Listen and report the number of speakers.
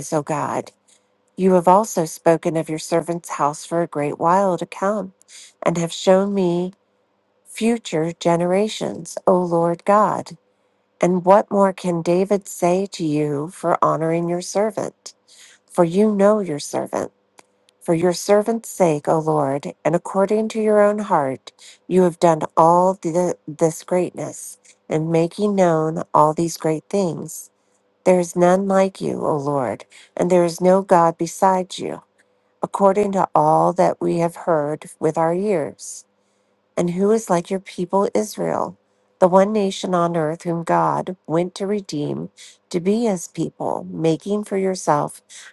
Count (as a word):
one